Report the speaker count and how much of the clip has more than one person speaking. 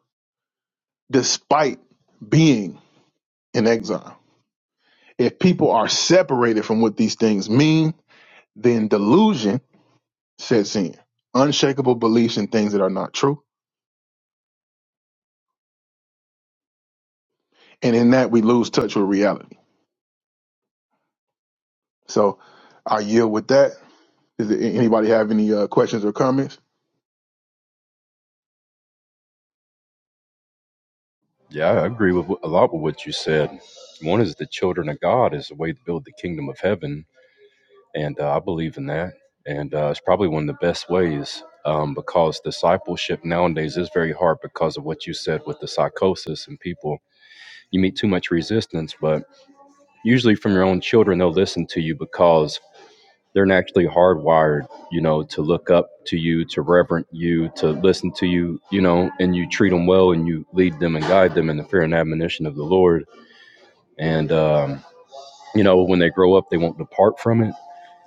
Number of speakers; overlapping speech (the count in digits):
2, no overlap